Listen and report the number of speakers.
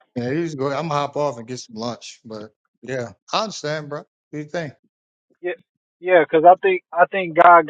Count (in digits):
2